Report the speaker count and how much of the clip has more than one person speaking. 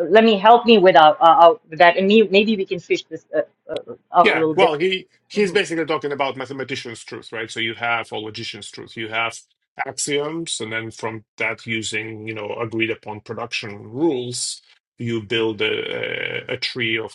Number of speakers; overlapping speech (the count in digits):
2, about 4%